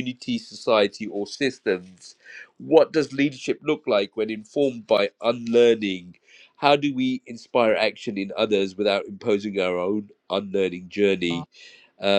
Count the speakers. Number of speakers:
1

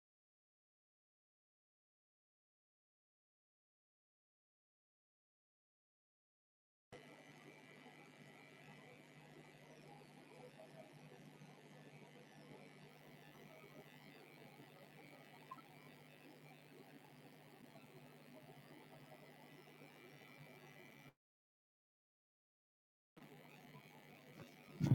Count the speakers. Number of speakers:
0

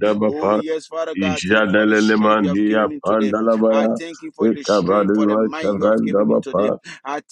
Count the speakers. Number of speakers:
2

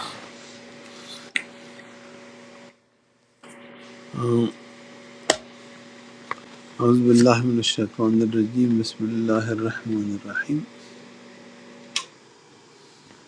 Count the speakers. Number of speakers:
1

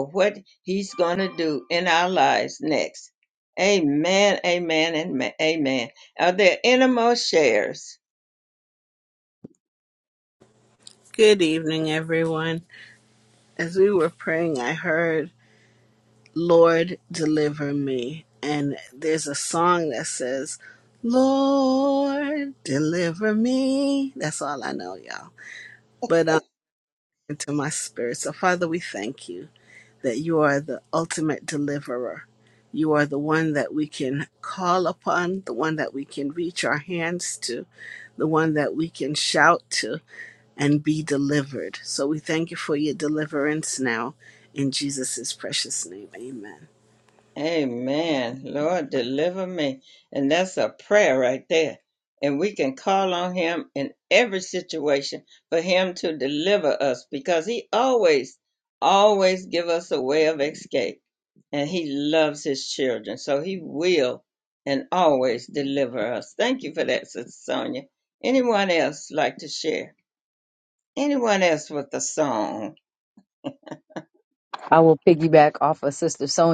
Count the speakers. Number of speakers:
3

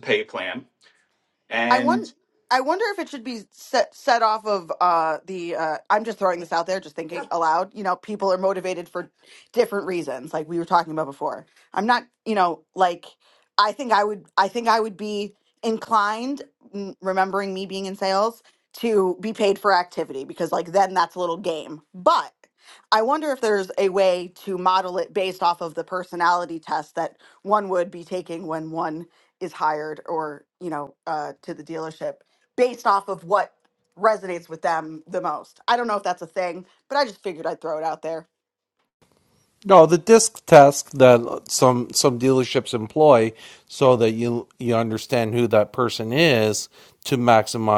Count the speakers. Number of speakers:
3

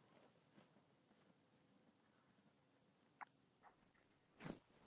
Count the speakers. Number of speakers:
0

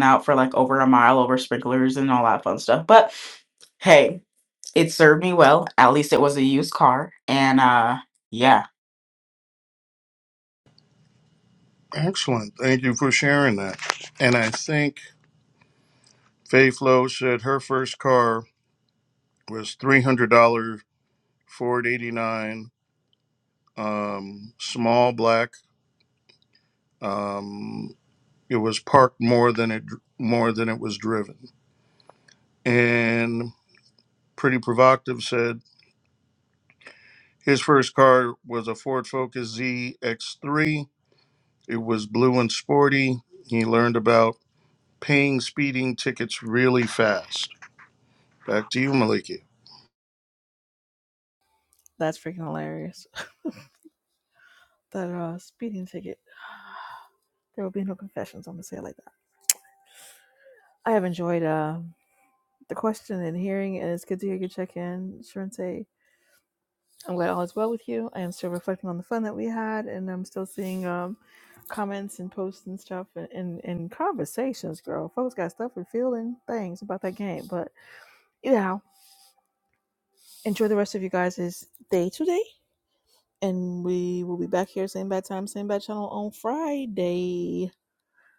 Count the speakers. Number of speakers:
3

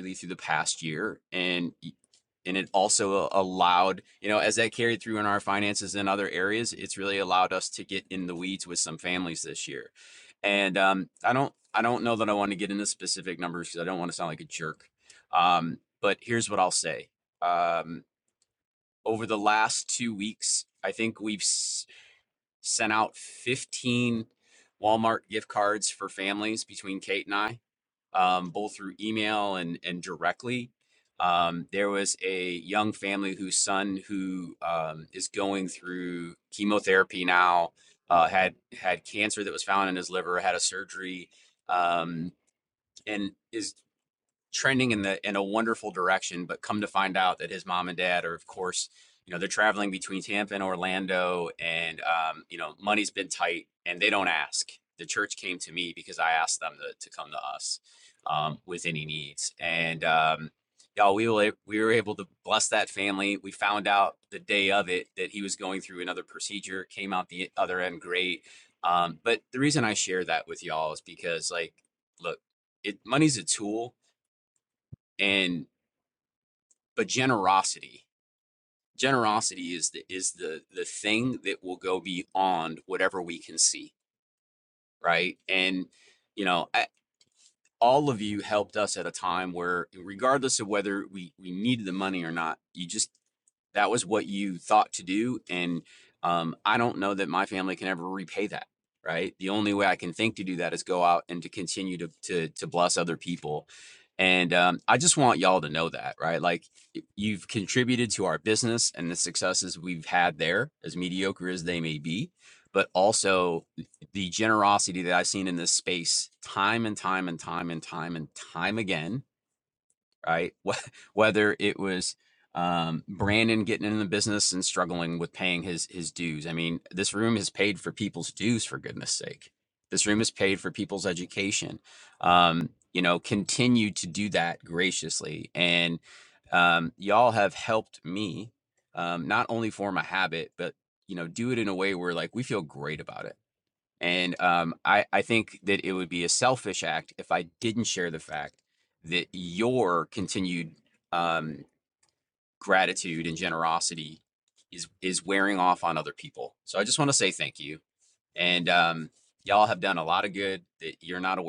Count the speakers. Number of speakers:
1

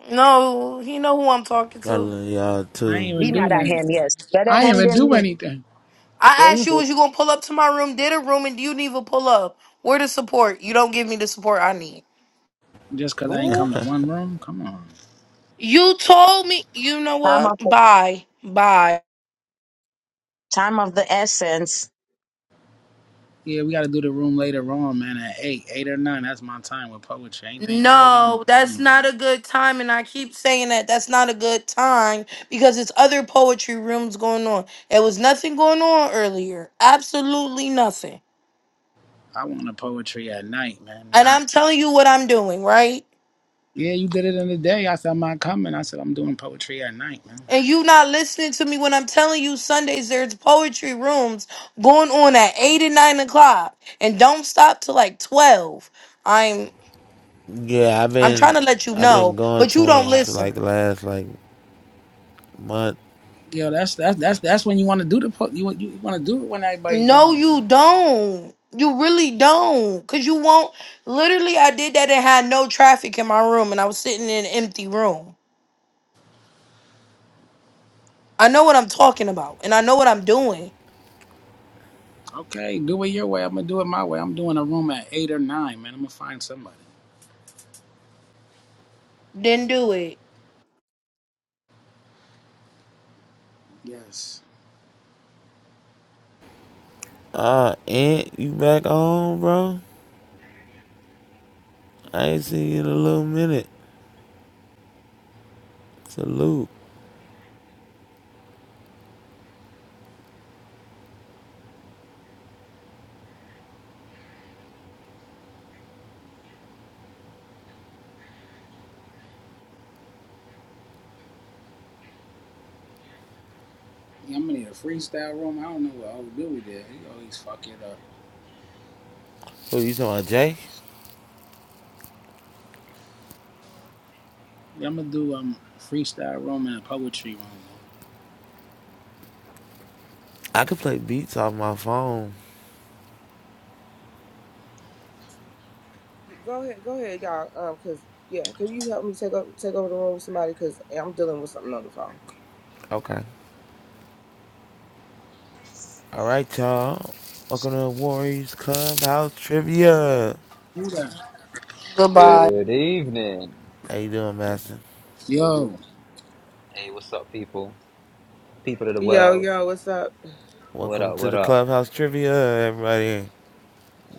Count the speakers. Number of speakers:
6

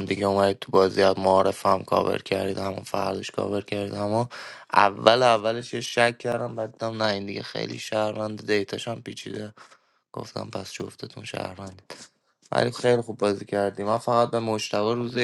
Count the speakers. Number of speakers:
1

